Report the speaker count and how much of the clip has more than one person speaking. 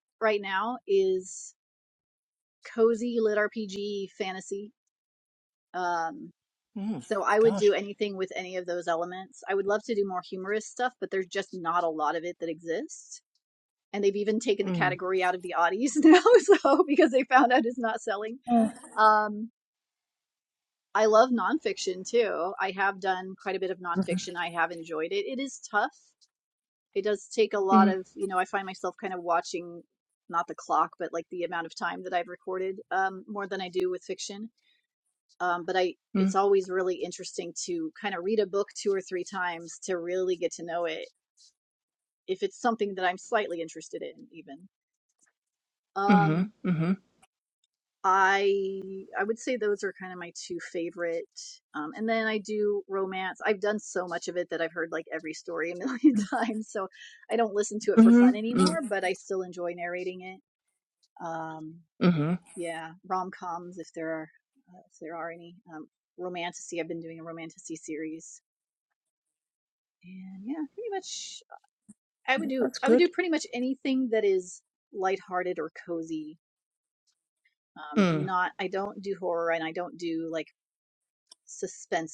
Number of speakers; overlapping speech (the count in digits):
2, about 3%